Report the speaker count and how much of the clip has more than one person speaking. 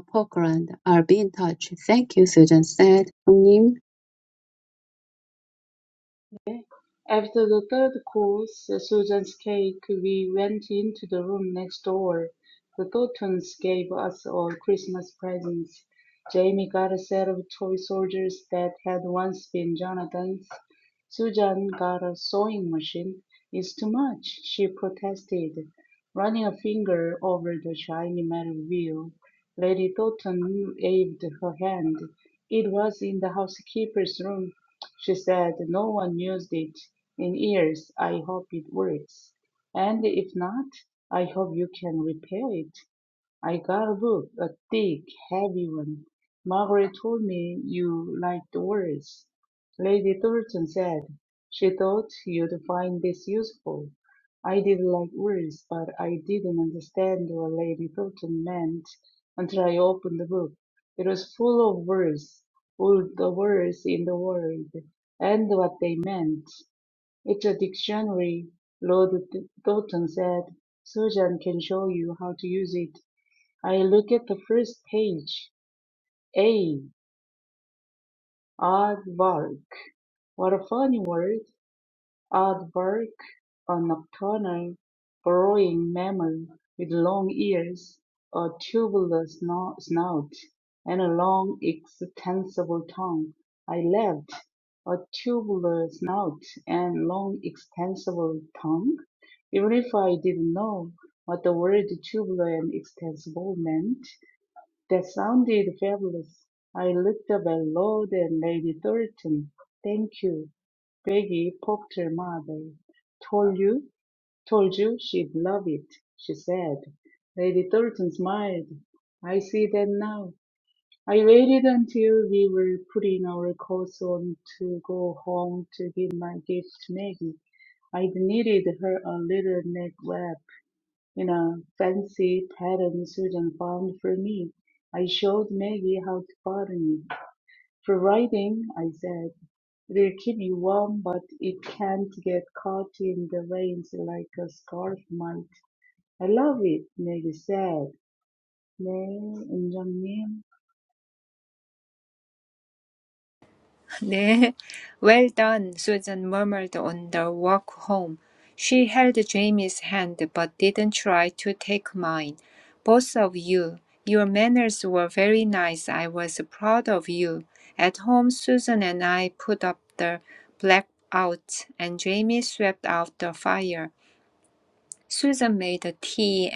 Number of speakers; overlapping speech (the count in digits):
3, no overlap